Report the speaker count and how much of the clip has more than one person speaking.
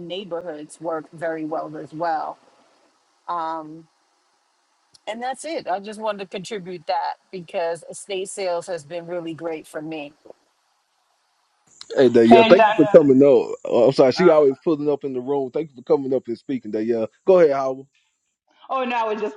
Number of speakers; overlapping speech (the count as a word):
three, about 5%